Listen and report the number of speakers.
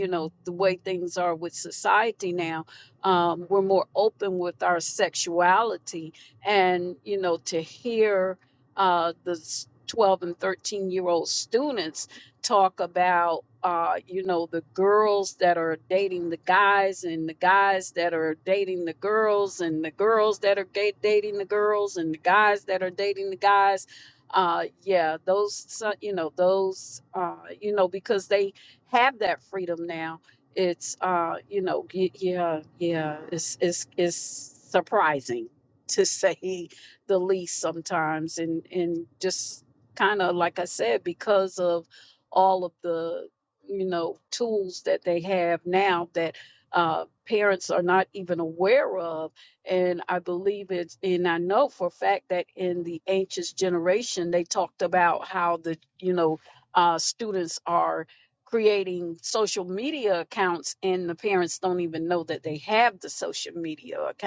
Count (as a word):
one